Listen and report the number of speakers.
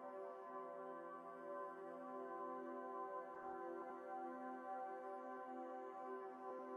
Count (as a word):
zero